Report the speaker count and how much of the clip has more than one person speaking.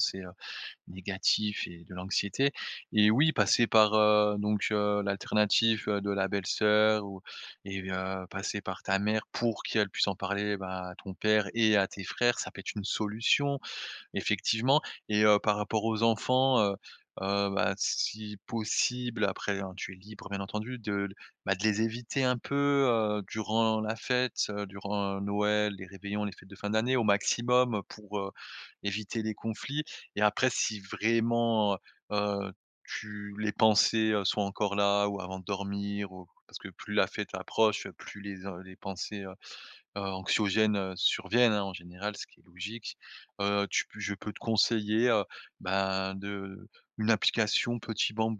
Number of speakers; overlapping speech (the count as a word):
one, no overlap